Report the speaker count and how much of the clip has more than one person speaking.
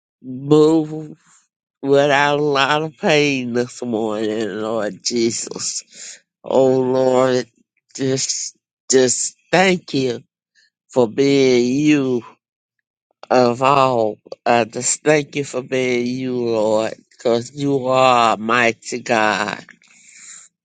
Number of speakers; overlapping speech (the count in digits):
1, no overlap